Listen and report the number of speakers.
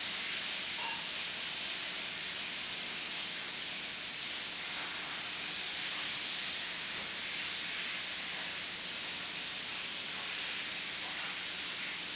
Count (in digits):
0